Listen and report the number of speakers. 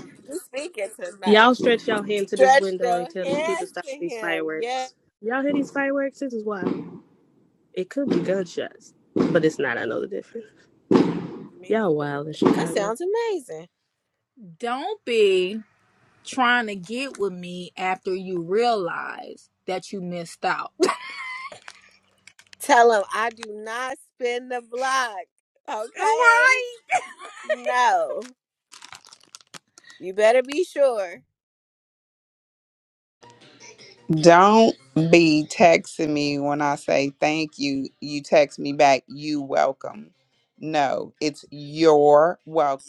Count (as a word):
four